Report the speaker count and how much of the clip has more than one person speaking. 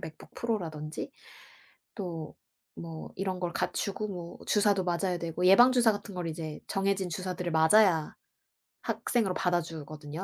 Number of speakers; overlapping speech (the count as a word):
one, no overlap